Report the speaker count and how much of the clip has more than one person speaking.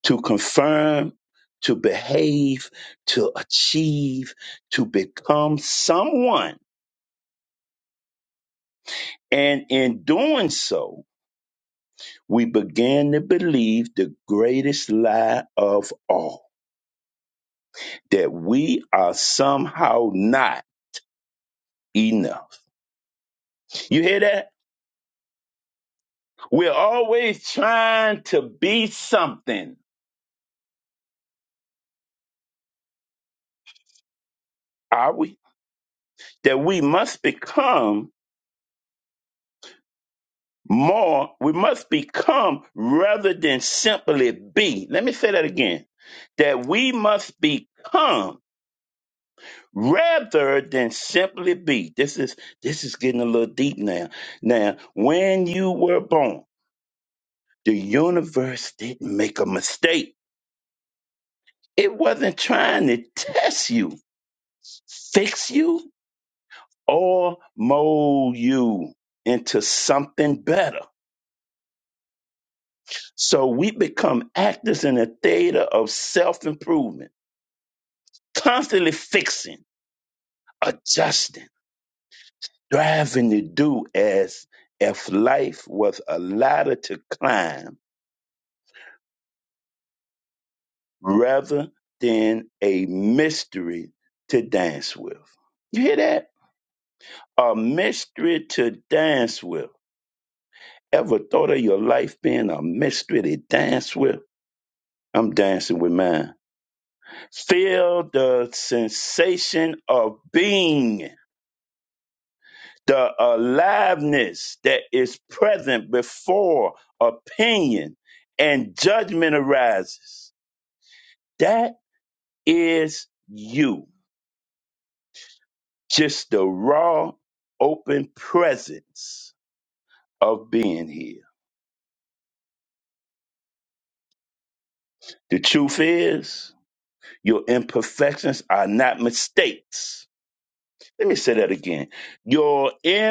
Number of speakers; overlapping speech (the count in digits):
1, no overlap